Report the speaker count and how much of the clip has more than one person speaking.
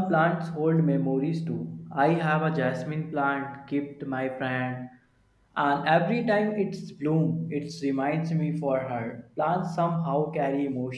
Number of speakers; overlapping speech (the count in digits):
1, no overlap